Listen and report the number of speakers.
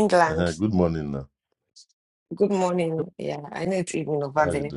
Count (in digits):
2